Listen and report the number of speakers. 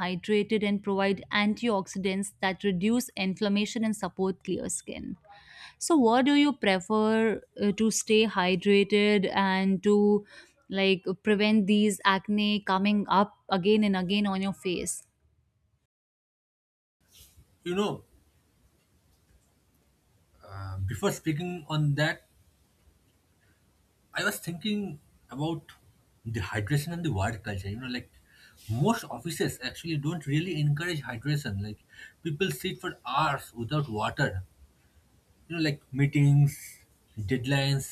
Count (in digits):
2